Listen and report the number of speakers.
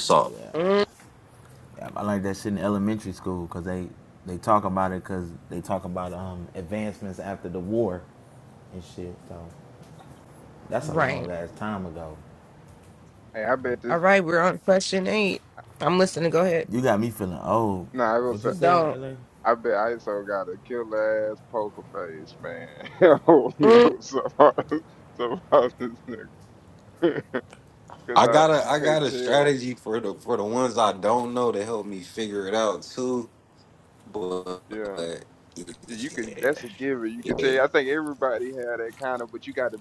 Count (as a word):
four